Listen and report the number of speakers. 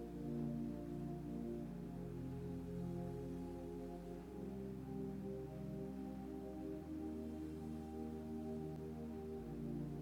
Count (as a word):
zero